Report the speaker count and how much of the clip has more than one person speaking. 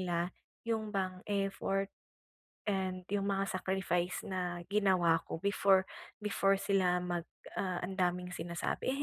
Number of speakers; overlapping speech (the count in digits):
1, no overlap